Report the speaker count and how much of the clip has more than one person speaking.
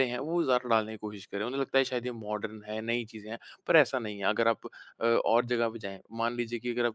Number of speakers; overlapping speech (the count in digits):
1, no overlap